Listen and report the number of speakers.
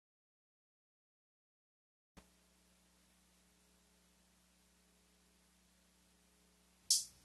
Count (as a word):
zero